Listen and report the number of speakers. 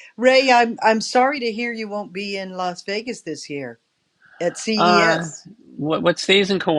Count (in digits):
2